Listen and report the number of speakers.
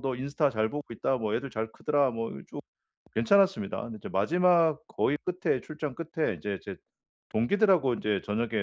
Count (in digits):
1